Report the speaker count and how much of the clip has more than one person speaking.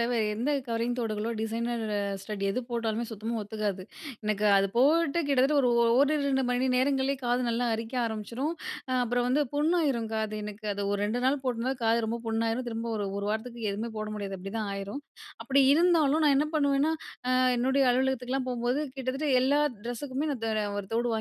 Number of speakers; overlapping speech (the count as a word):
one, no overlap